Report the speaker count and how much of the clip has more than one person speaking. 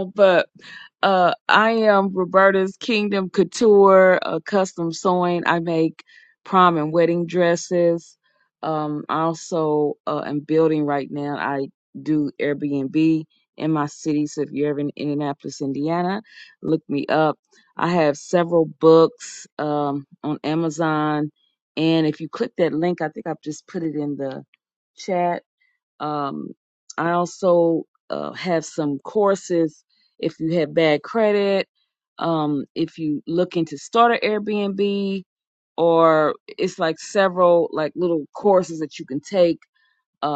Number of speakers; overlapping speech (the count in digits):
1, no overlap